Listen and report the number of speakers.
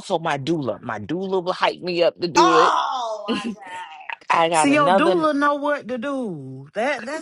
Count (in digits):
3